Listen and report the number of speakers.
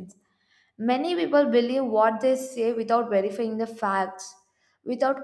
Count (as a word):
one